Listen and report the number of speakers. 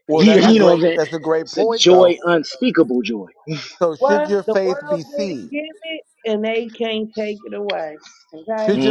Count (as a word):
three